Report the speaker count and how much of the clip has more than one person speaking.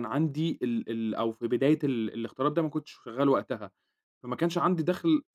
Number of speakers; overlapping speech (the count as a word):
one, no overlap